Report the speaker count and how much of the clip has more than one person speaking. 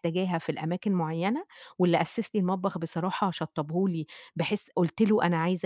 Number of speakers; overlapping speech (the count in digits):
1, no overlap